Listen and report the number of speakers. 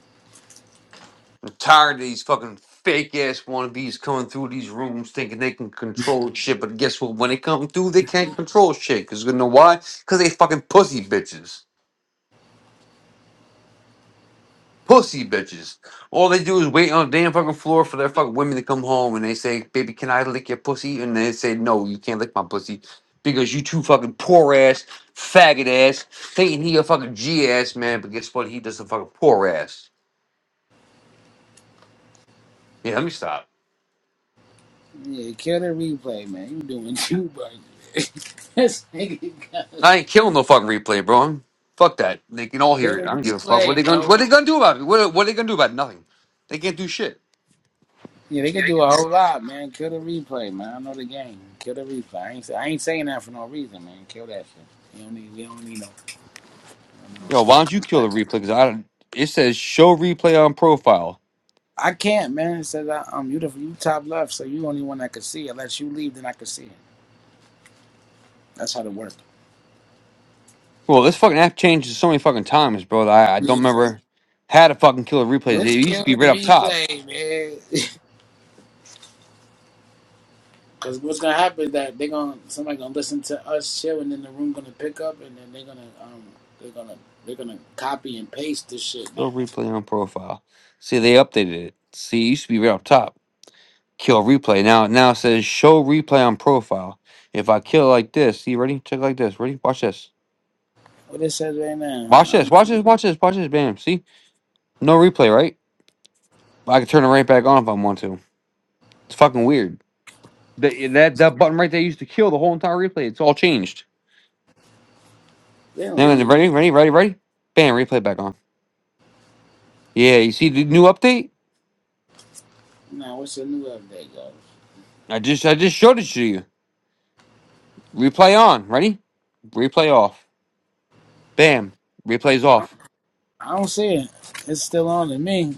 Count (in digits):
2